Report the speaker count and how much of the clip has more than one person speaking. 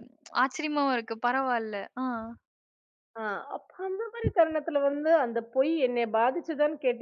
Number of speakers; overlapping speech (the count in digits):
2, no overlap